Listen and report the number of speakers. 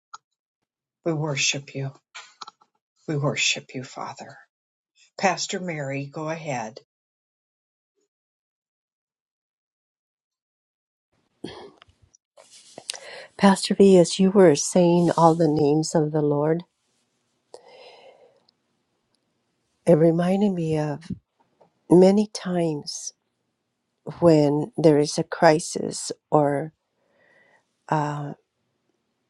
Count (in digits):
2